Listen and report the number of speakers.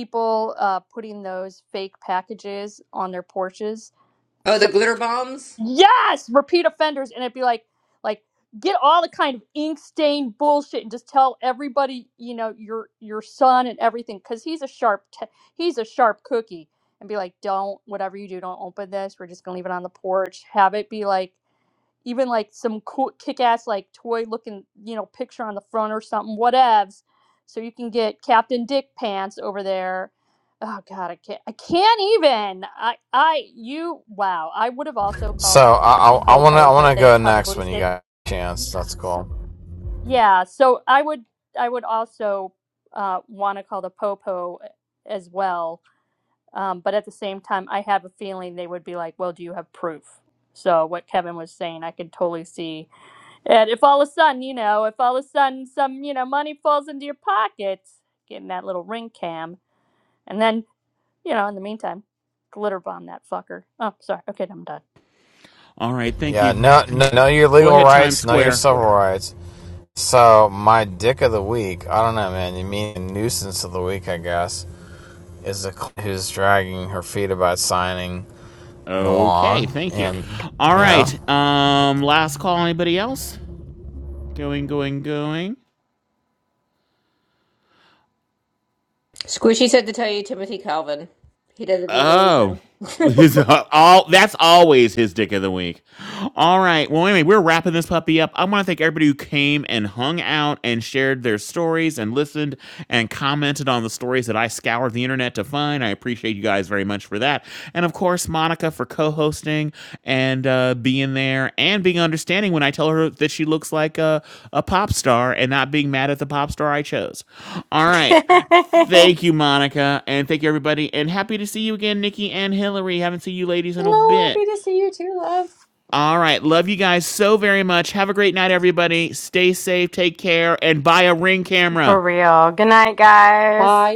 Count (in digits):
6